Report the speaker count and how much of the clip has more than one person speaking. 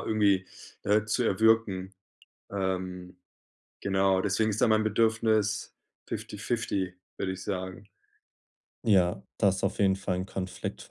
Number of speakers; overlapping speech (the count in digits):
2, no overlap